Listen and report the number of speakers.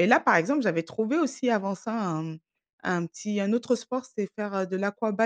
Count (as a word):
one